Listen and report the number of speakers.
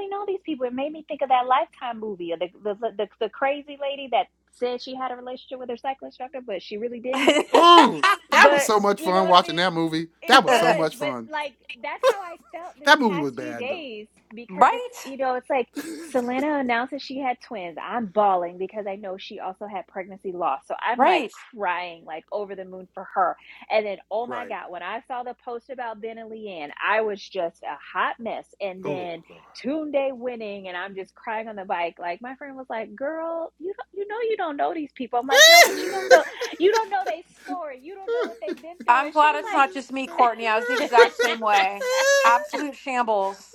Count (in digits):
3